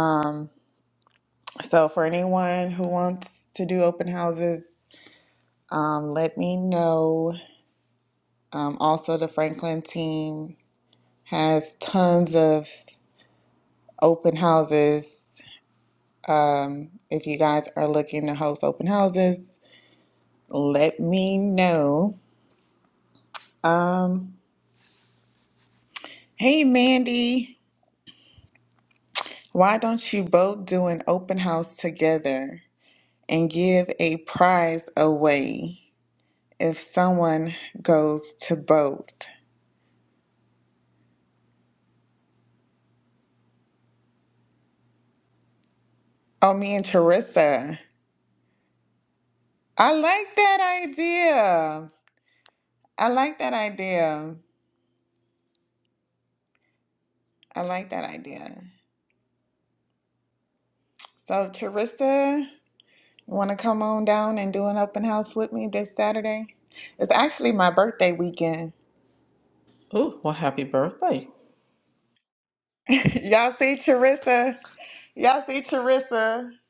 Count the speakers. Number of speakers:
2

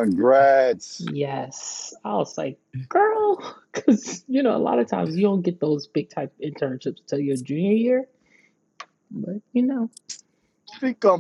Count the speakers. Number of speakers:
2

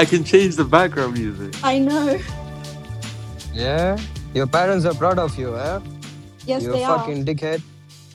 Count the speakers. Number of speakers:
3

